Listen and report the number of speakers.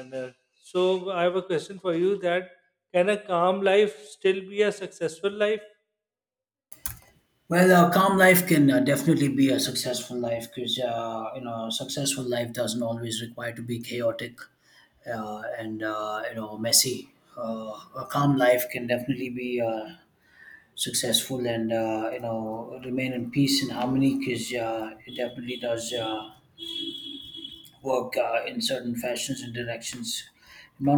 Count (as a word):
two